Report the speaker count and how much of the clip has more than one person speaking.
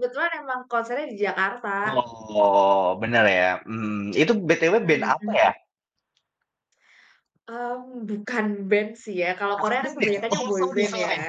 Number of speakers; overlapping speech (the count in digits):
2, about 16%